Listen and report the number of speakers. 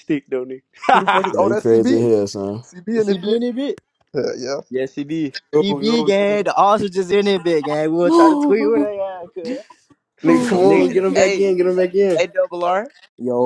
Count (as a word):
five